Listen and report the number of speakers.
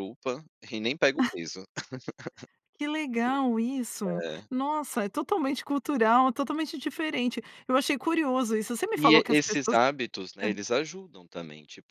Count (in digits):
2